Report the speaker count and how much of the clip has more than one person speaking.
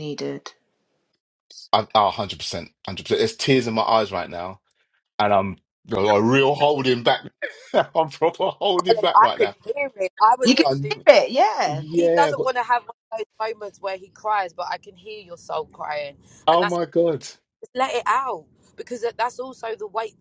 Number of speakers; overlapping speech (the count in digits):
3, about 11%